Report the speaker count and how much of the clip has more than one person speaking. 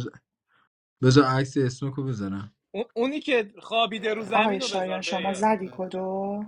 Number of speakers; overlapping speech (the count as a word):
three, about 17%